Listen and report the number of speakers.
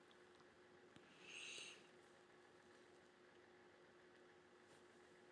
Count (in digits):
0